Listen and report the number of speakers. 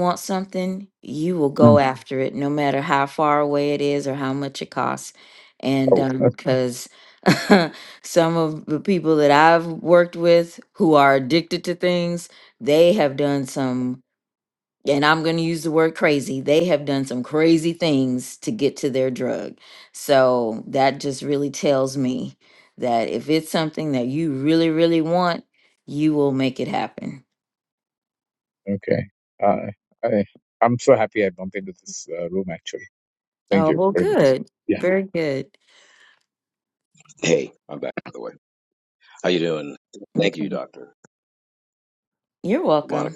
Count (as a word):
three